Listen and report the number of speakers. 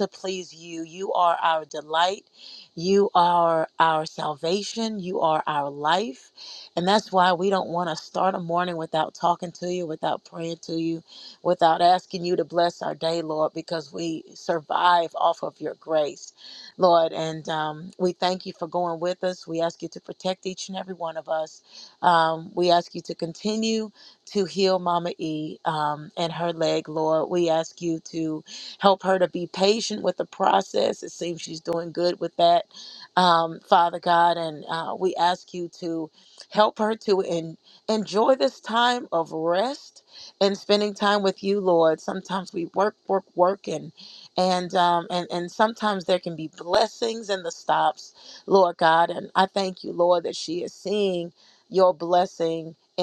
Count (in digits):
1